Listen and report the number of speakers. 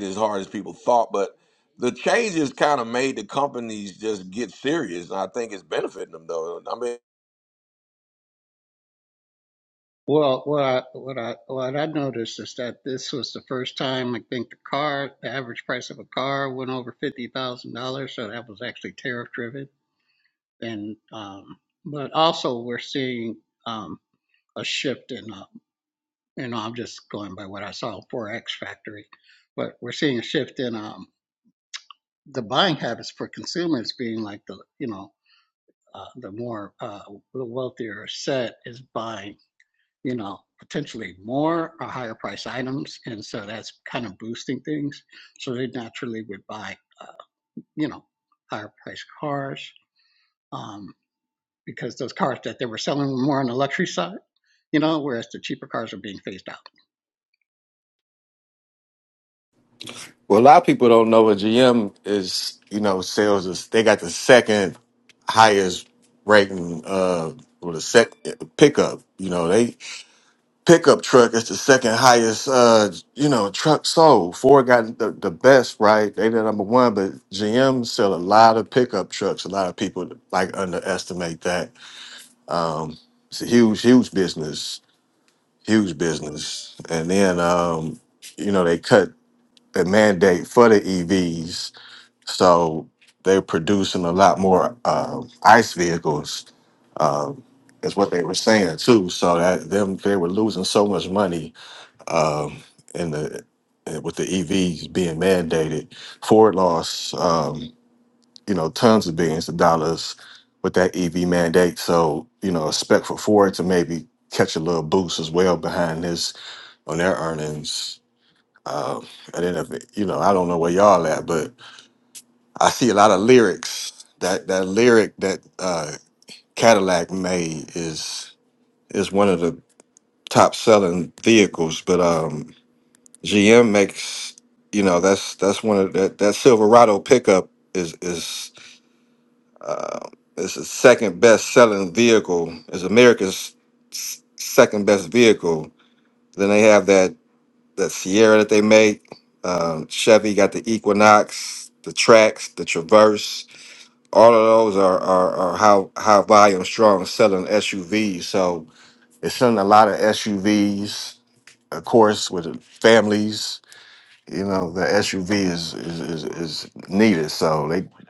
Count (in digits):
3